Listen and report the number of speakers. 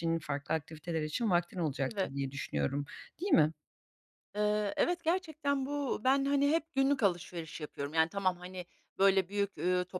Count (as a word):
two